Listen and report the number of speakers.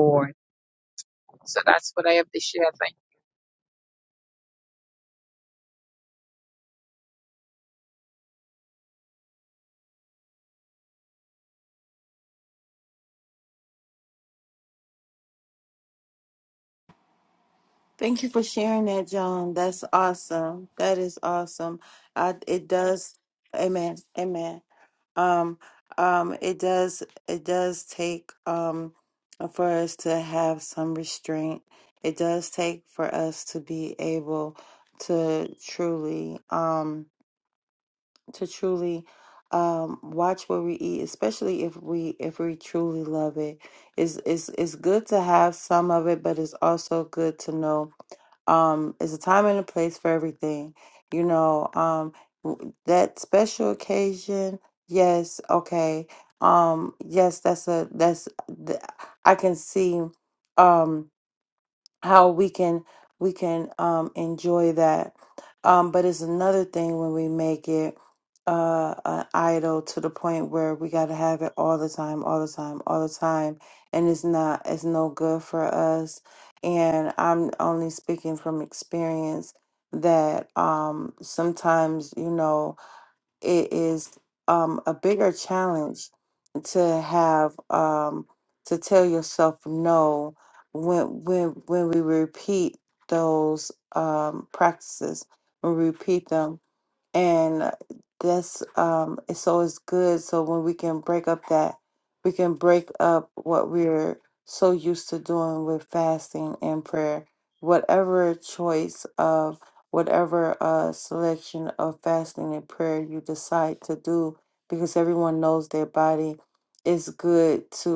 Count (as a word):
two